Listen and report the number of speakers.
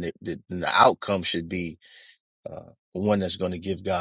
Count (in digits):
1